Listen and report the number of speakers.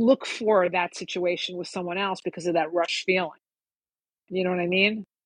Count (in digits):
1